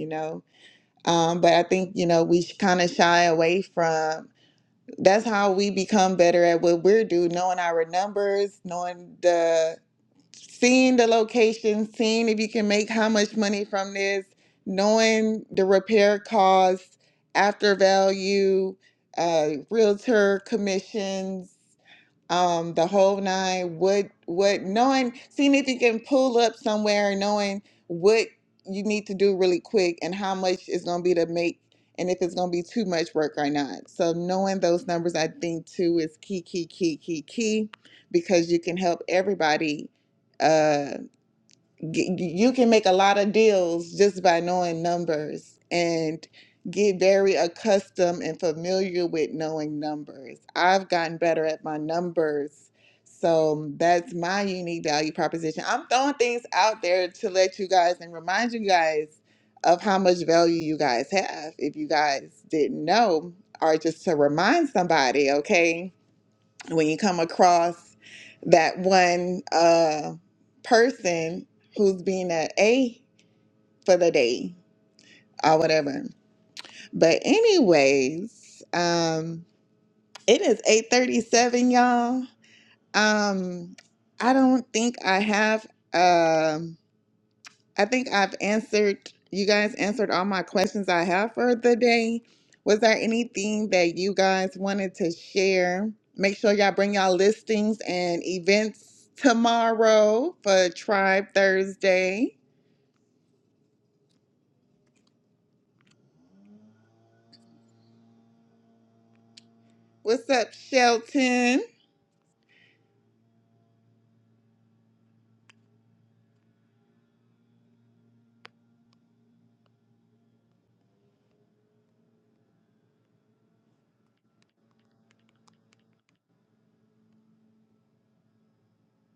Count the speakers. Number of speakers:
1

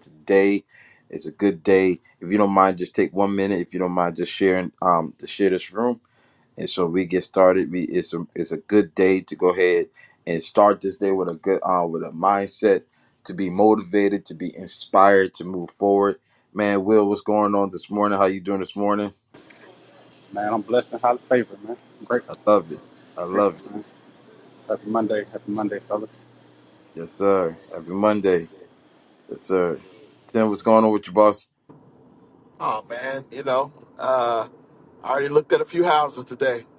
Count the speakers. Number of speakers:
3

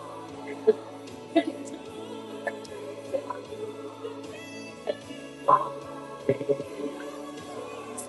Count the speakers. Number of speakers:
0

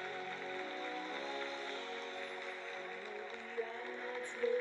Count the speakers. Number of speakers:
0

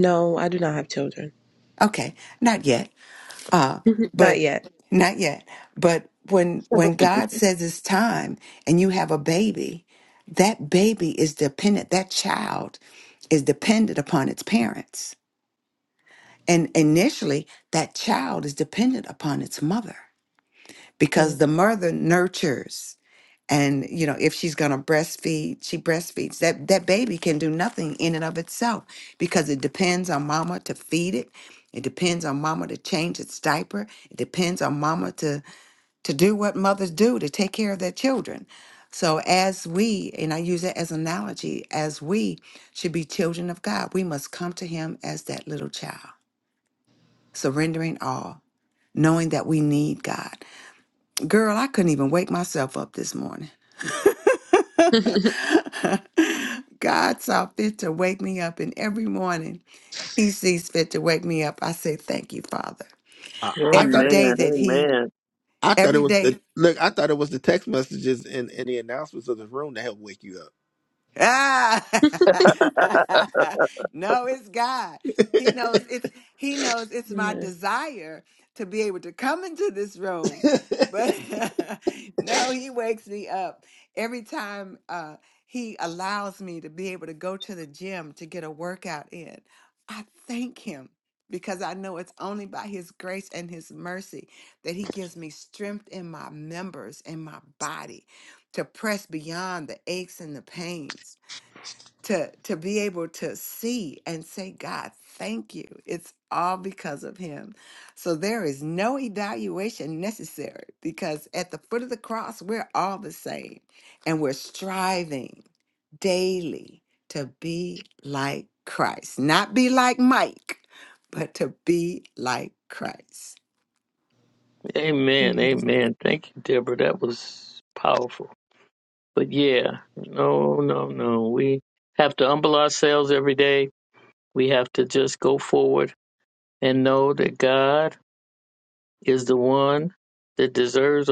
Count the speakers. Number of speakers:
4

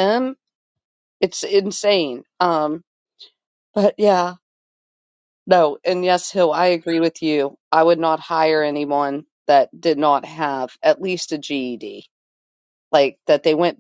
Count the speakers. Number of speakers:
1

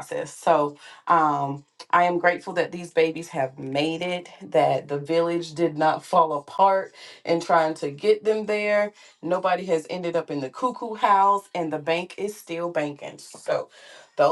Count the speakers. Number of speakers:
1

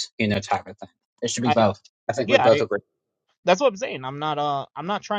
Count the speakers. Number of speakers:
2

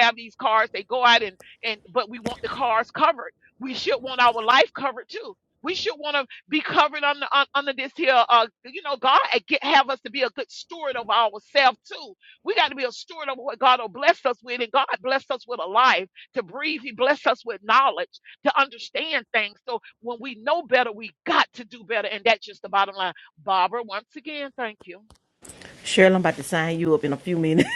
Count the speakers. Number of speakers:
2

